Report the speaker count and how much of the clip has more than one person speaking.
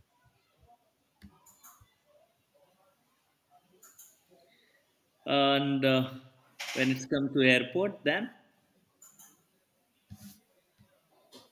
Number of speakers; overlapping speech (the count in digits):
1, no overlap